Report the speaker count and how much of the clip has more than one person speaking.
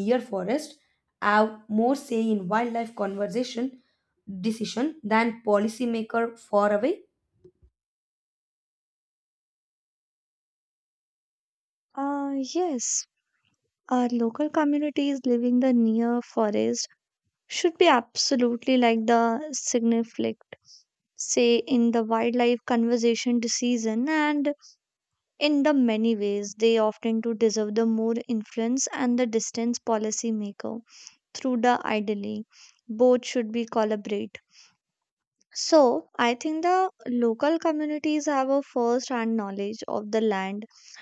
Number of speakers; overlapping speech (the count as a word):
two, no overlap